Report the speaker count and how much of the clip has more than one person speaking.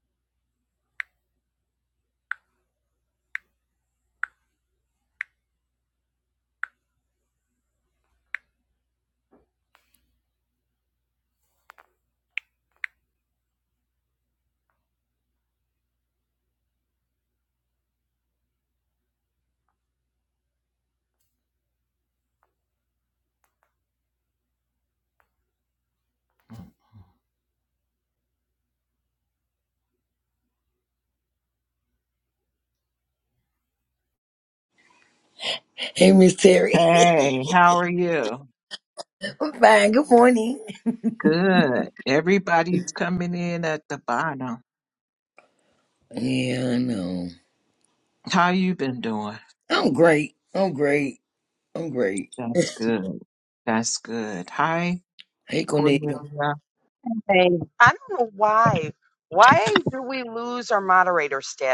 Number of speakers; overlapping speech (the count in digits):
3, about 1%